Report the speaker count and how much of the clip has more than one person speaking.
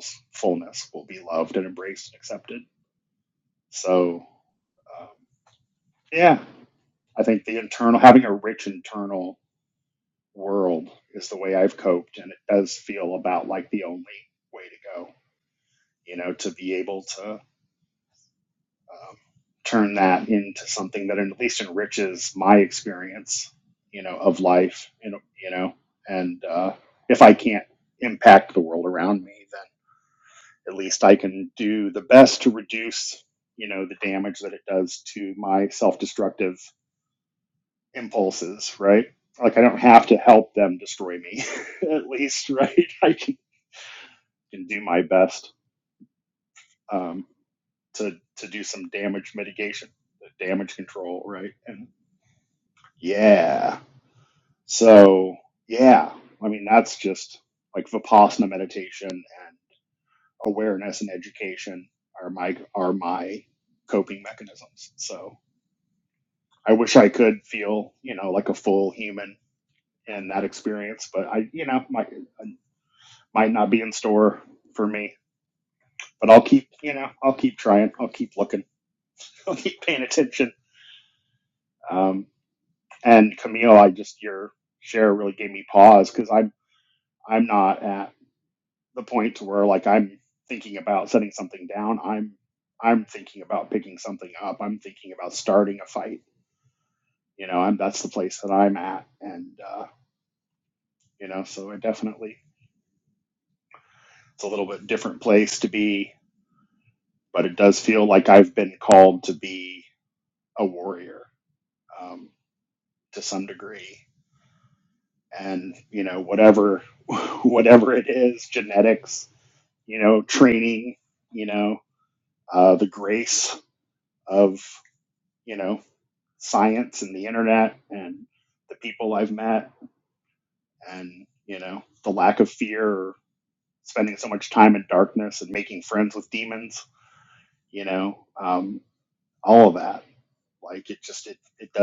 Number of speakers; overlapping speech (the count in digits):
1, no overlap